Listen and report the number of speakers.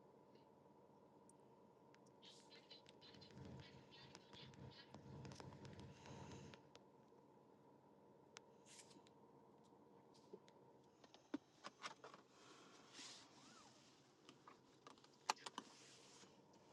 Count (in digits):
0